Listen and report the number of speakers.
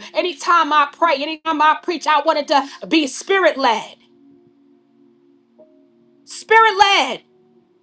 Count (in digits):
1